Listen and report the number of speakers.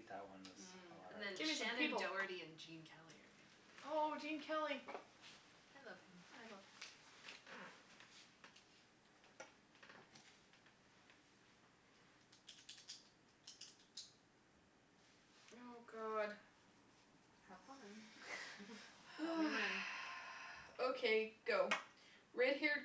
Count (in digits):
4